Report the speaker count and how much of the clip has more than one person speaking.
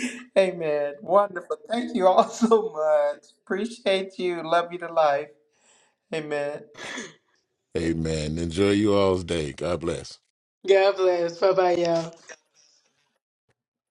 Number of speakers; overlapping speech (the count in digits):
3, no overlap